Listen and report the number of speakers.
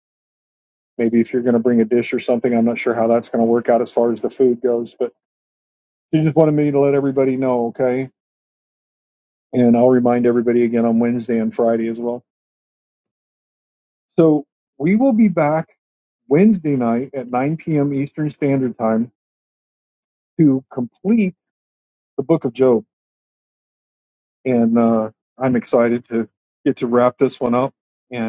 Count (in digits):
1